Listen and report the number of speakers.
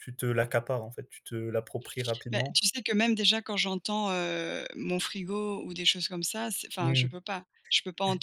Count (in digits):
2